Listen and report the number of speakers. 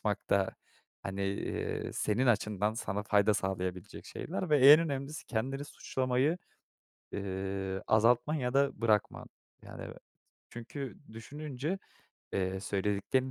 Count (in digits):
1